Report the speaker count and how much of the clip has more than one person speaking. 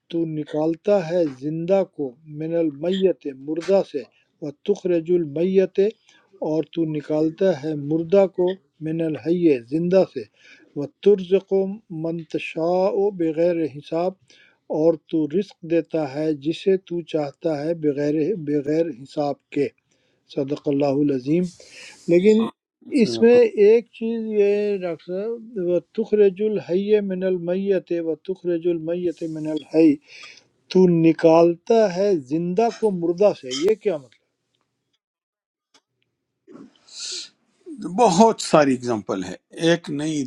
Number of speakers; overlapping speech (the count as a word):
two, about 1%